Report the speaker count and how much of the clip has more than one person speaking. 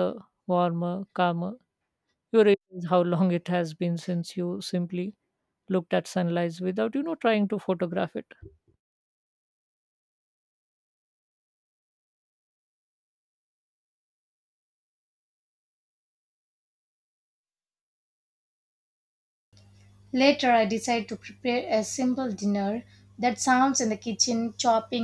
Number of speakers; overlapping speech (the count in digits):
2, no overlap